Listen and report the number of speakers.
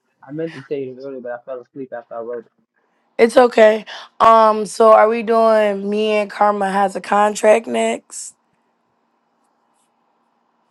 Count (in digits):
2